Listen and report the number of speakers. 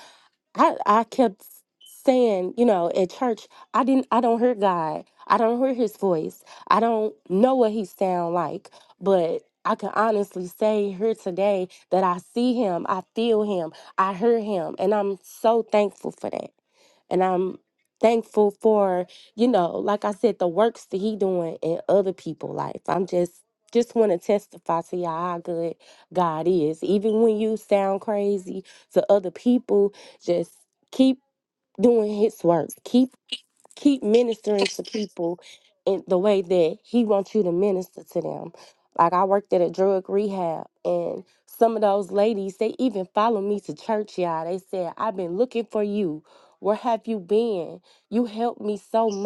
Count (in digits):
1